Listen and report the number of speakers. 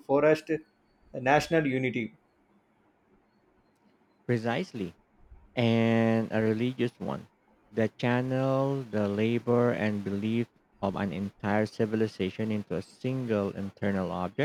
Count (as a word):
two